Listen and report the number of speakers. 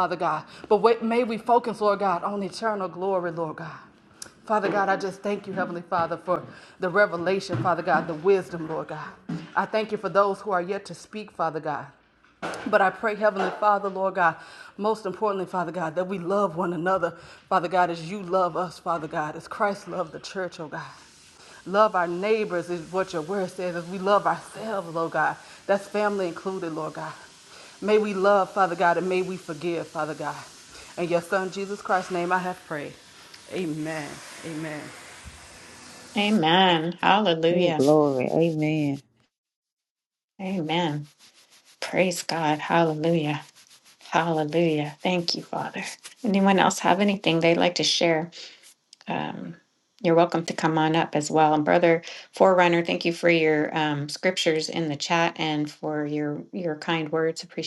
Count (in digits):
3